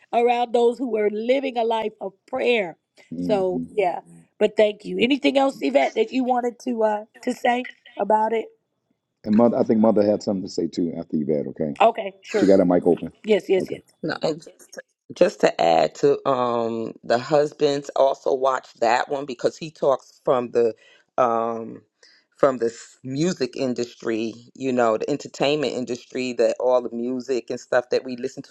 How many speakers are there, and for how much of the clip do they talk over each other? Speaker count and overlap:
3, about 2%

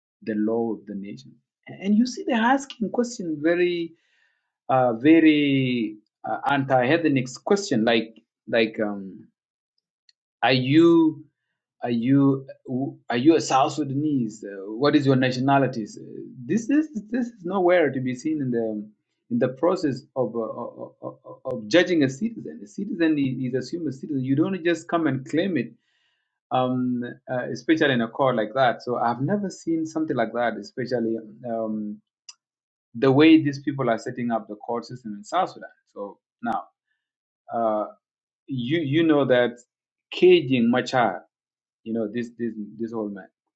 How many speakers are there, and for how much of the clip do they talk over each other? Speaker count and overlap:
1, no overlap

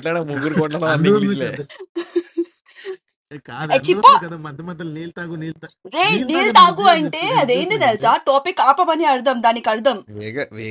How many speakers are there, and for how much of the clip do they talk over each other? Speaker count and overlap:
3, about 34%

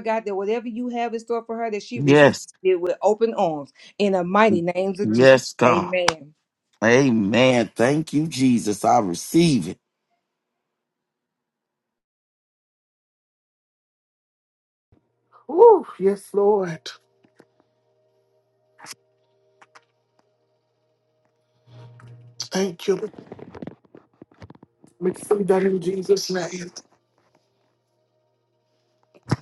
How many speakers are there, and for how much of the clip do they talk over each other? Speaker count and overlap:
3, about 3%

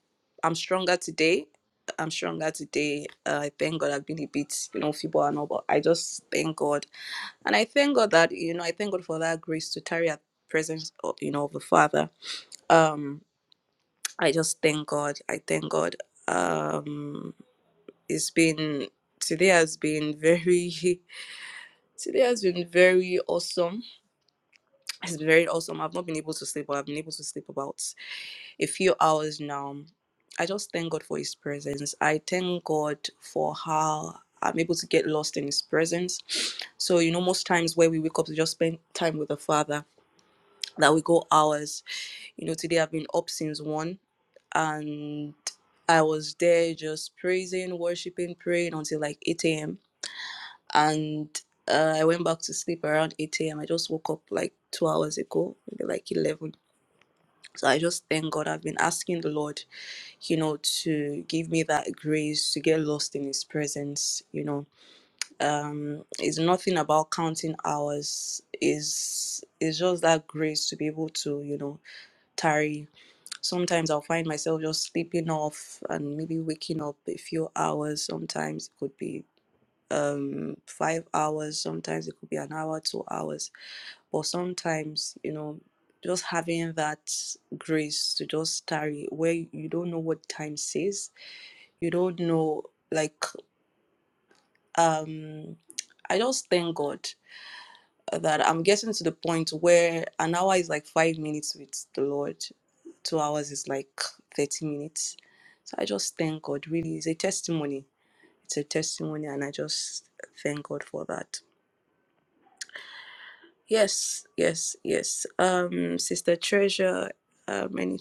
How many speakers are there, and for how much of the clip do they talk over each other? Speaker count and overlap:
1, no overlap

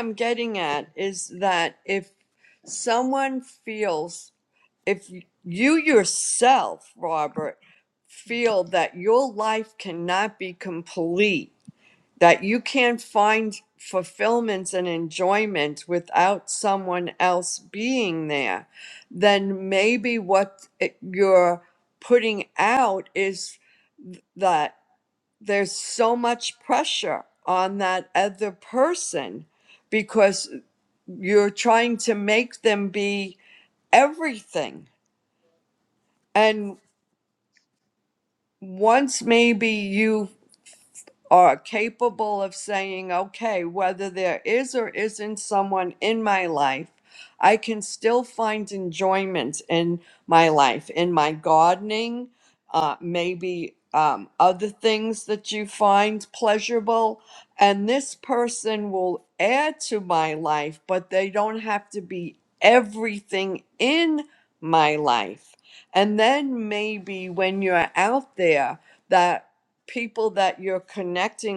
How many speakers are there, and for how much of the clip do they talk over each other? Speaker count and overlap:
1, no overlap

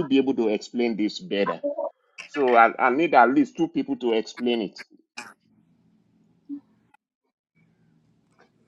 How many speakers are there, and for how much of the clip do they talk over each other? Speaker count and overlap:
1, no overlap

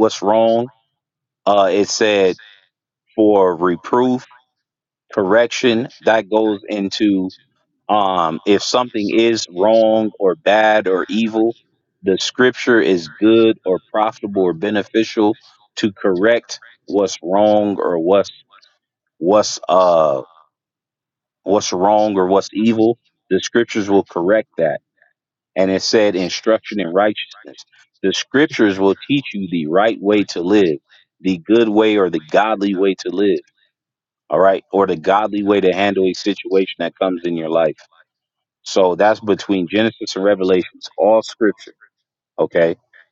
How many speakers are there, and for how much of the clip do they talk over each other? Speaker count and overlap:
1, no overlap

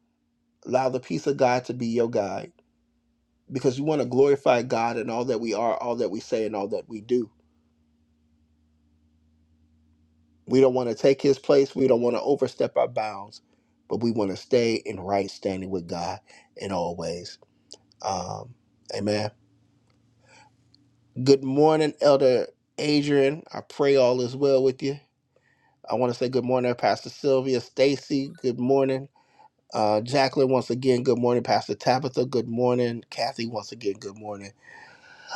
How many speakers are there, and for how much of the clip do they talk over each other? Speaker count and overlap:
1, no overlap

